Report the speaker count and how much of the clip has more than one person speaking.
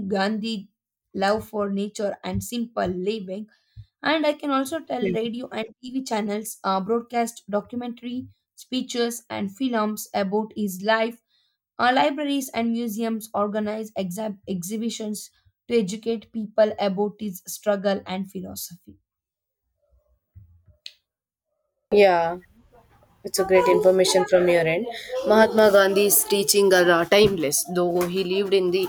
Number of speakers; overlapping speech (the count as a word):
two, no overlap